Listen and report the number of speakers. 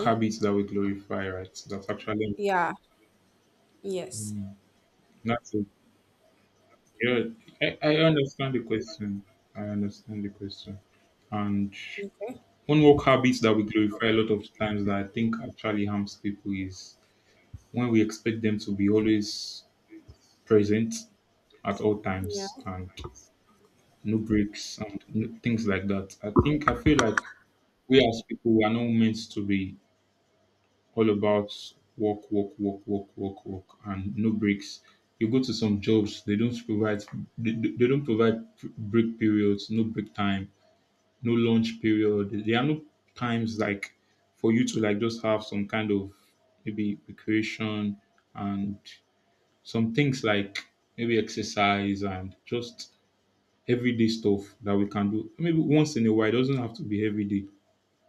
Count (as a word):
two